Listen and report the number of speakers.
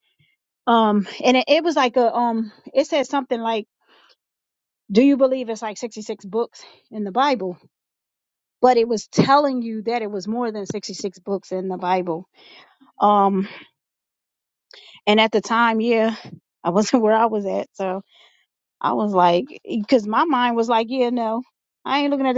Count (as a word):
one